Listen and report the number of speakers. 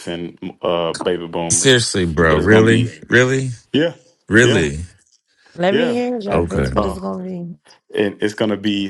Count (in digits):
3